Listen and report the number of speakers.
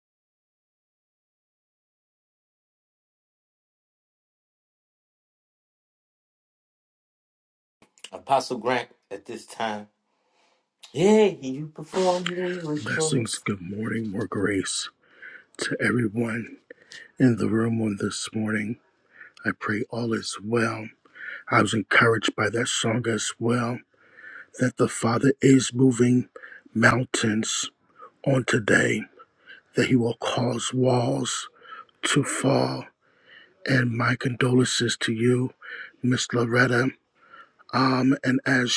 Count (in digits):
2